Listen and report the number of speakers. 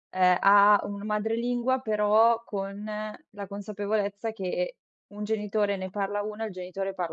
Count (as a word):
one